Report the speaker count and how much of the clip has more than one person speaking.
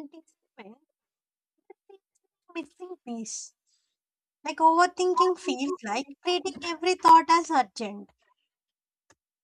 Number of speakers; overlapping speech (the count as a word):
one, no overlap